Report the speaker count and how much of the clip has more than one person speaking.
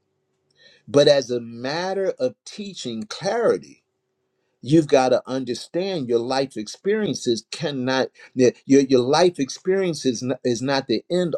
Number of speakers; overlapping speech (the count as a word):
one, no overlap